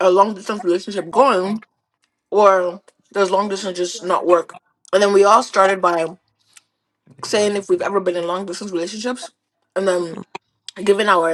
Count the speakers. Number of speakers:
one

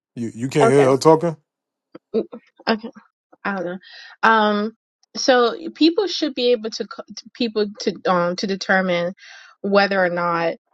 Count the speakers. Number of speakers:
two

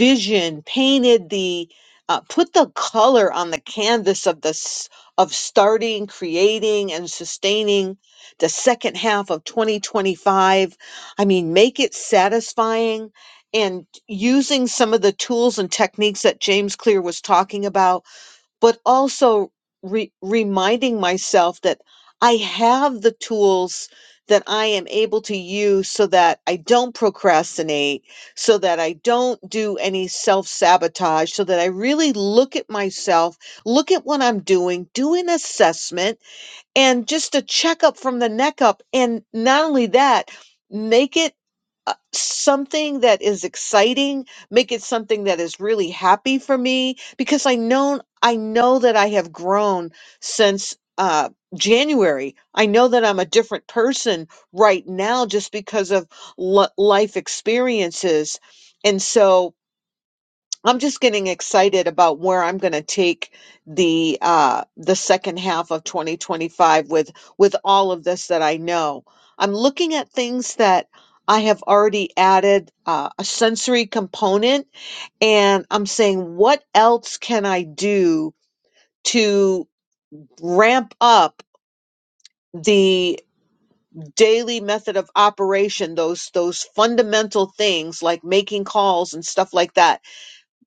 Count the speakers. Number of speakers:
one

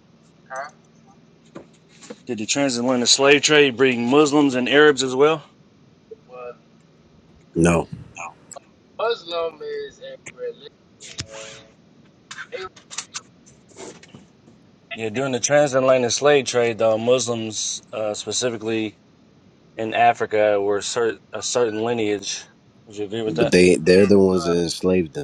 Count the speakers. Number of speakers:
three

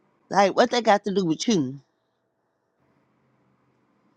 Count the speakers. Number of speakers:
one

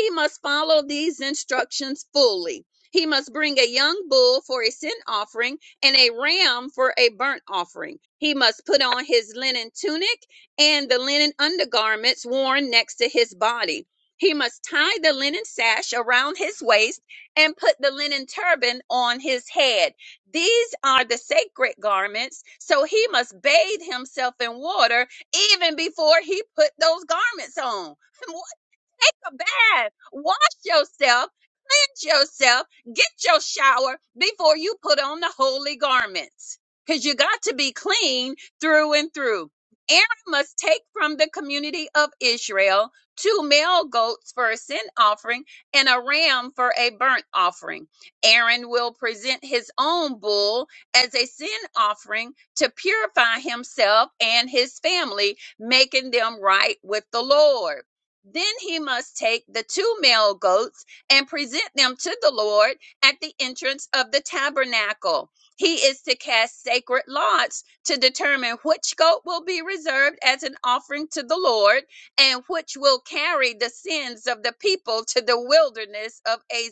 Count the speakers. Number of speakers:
one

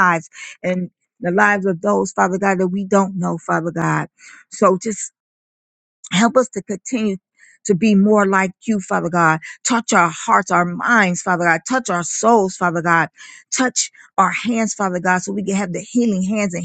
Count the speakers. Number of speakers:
one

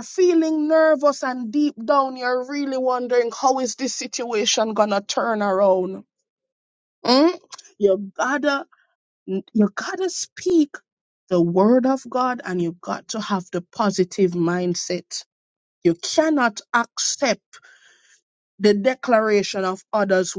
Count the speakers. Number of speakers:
one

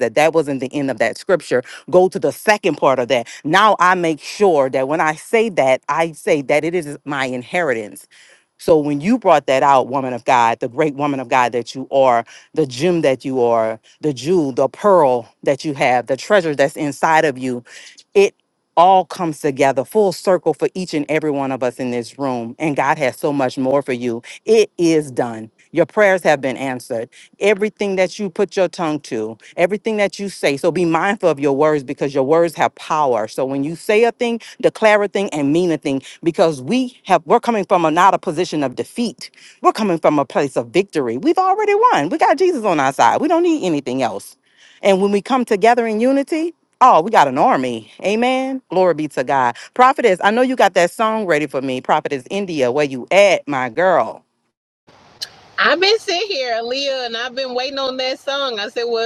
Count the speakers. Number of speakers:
two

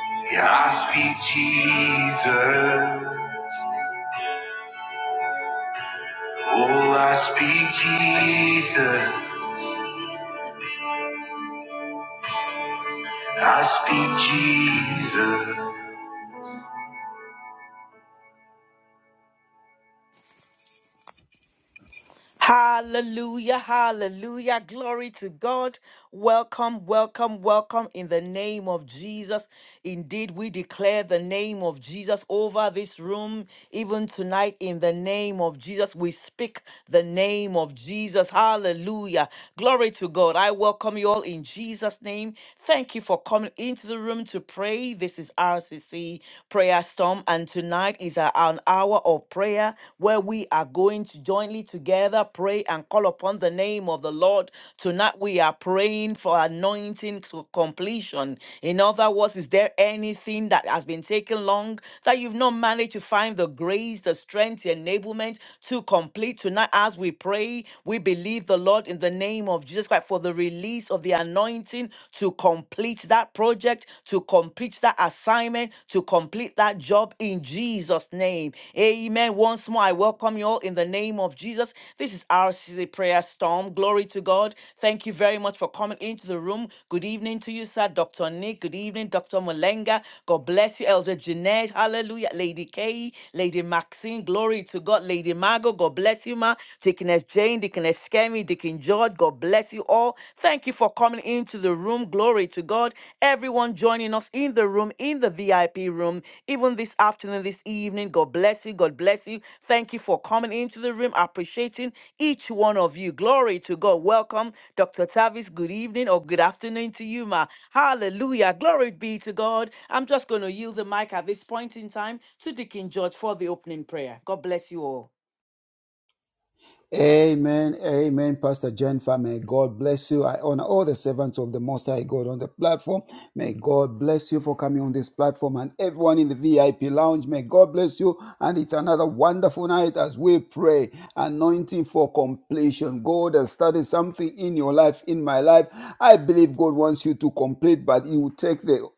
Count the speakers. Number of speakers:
three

